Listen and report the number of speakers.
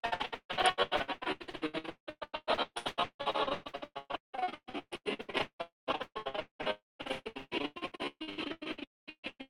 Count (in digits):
0